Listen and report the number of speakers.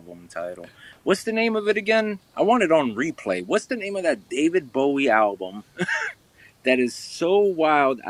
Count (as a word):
one